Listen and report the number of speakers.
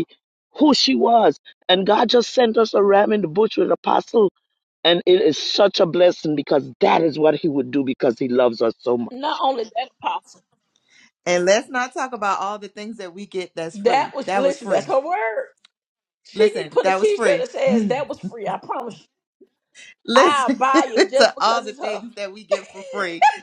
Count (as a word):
three